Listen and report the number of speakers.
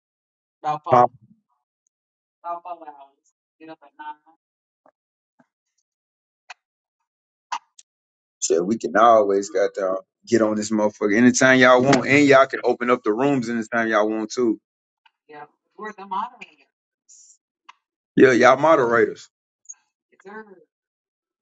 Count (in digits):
2